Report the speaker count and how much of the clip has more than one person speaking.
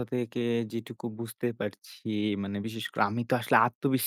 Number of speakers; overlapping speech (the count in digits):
1, no overlap